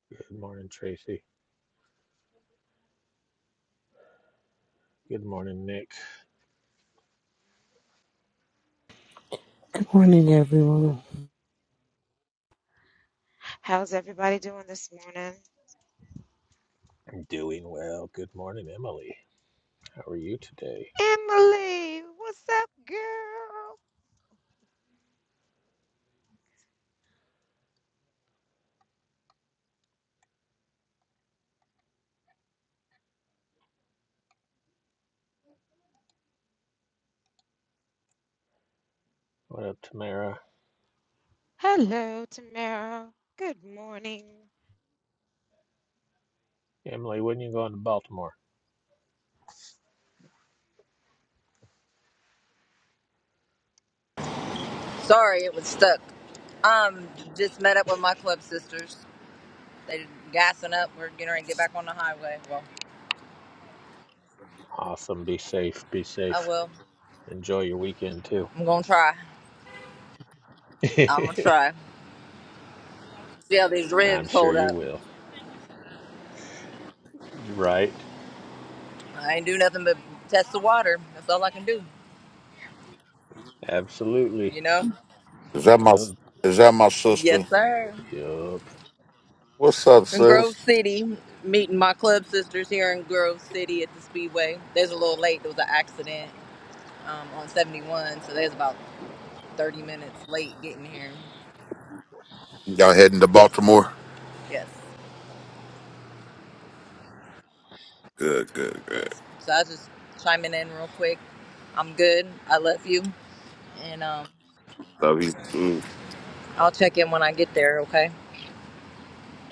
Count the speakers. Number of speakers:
5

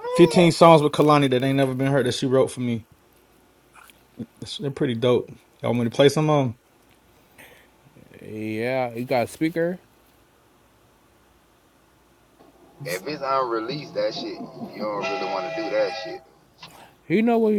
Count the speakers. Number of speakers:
3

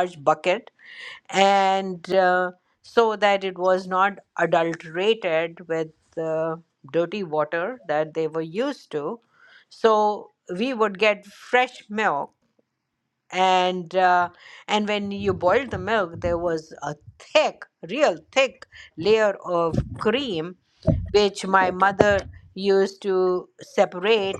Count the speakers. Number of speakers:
1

